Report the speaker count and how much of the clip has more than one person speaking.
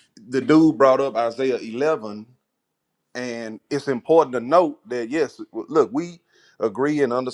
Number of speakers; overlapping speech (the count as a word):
one, no overlap